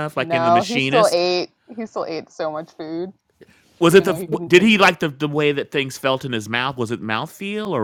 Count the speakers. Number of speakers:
2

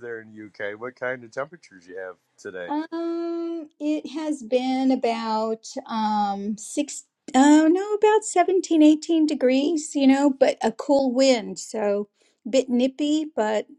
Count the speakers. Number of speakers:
2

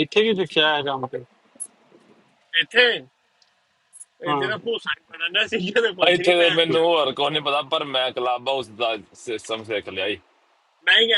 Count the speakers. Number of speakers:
3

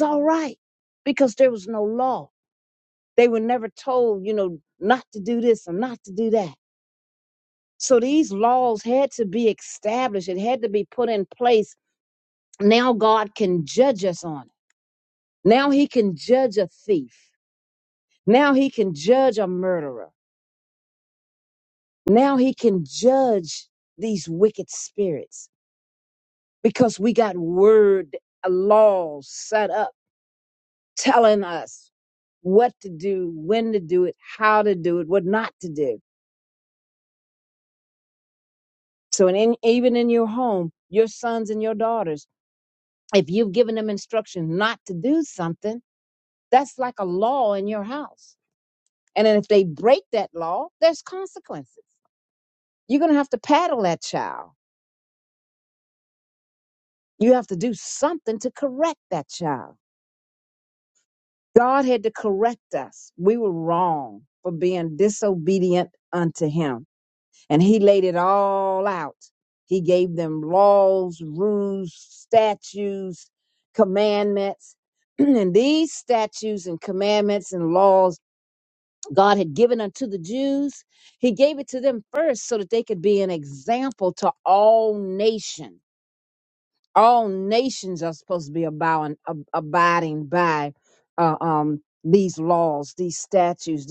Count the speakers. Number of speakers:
1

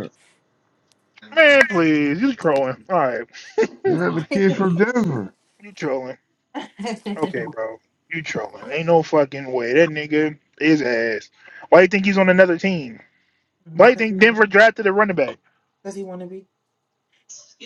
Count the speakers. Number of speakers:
3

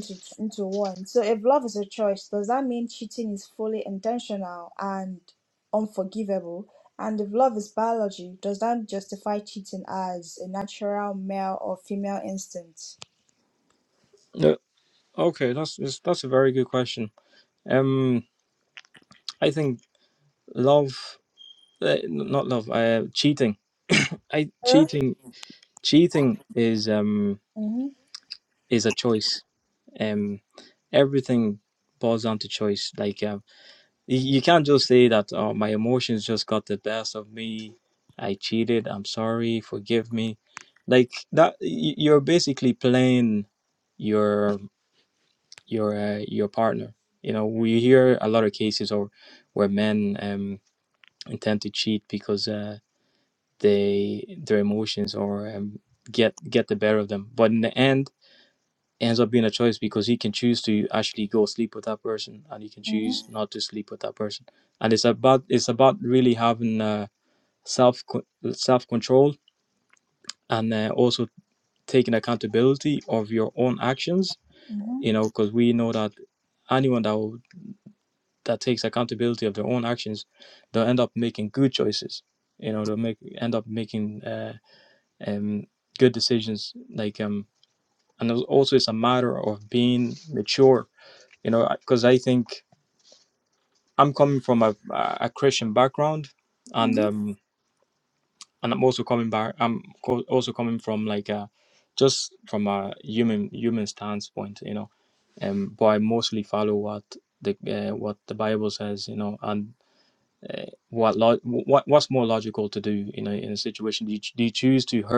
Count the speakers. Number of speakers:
2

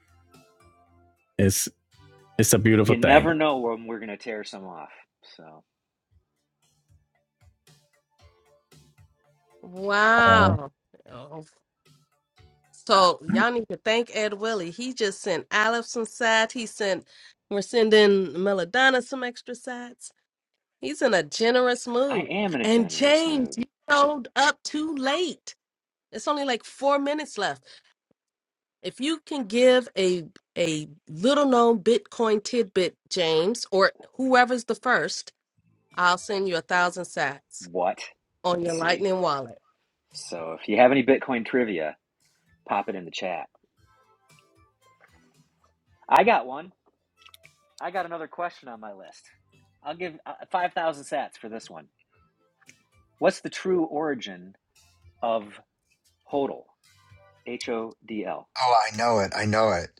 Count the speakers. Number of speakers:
4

